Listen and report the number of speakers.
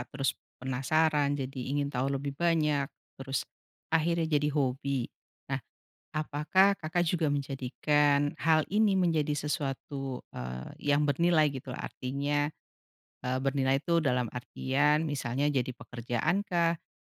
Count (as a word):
one